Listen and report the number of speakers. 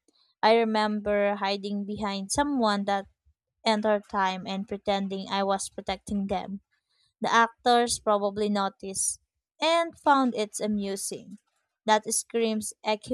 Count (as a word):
one